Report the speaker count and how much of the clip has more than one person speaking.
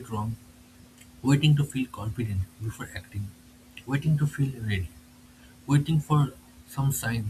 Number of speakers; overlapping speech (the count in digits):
1, no overlap